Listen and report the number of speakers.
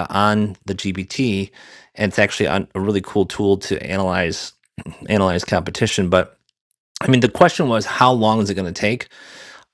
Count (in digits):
1